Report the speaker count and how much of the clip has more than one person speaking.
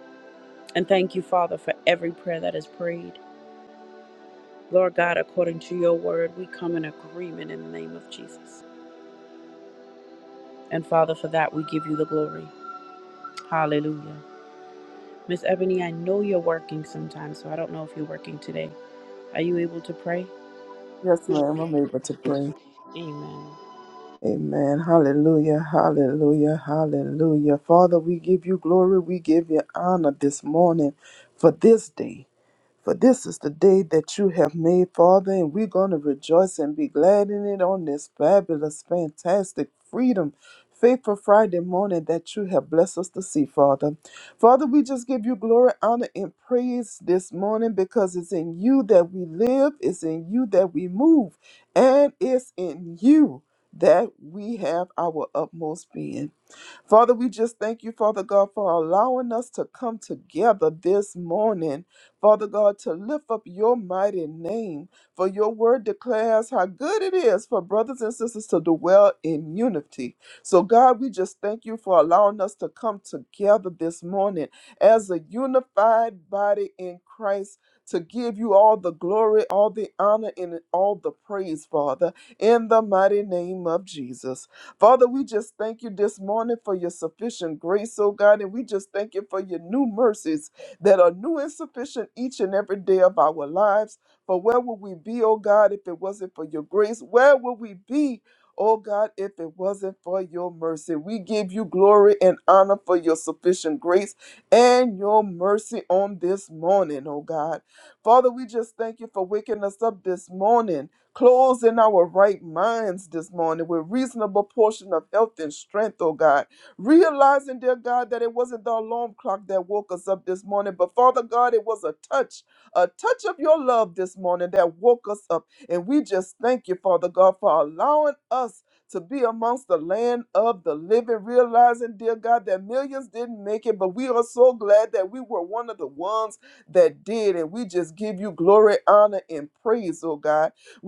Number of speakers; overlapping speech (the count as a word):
two, no overlap